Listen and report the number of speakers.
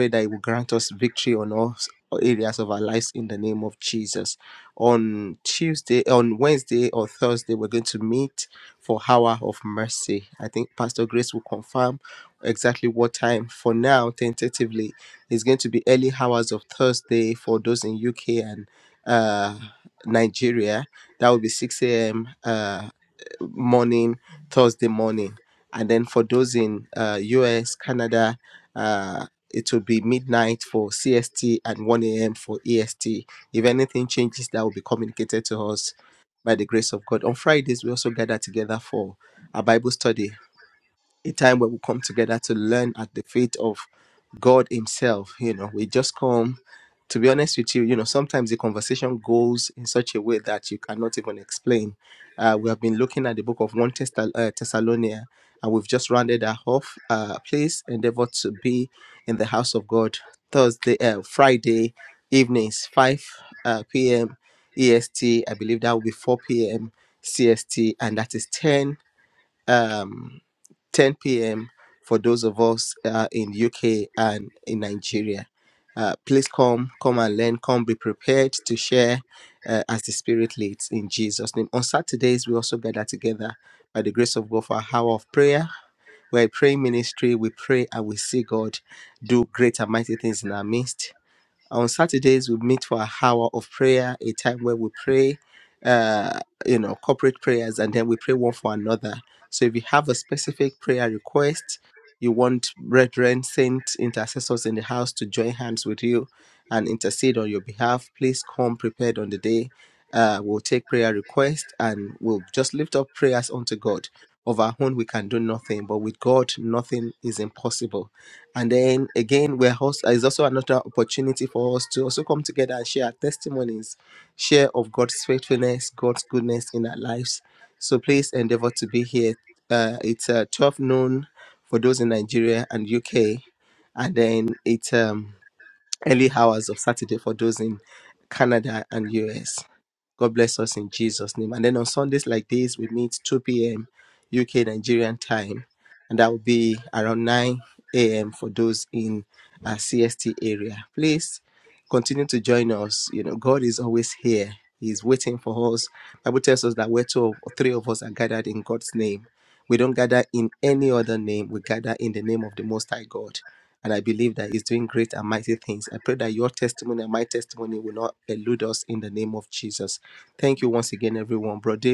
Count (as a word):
one